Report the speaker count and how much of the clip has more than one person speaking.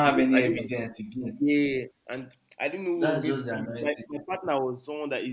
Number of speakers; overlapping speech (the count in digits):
2, about 33%